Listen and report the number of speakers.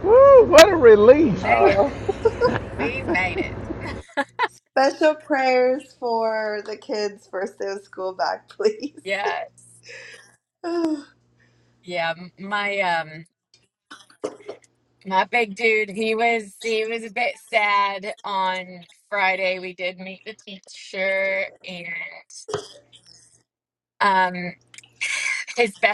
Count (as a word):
three